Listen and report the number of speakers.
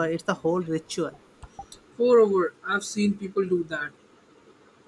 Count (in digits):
2